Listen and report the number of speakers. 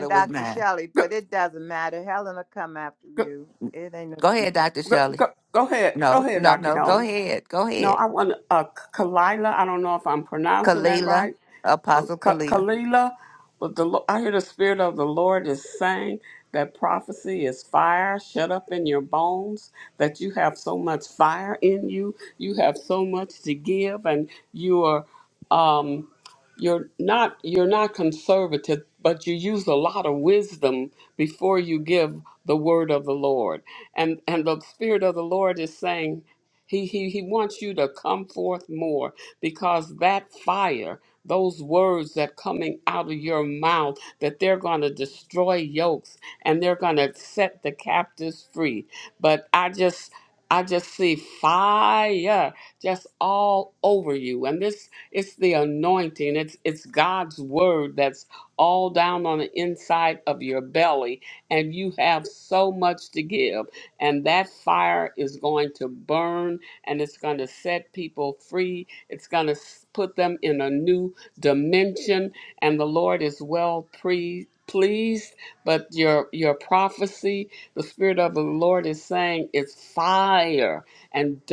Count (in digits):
3